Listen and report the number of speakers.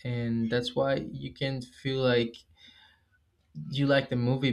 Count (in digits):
1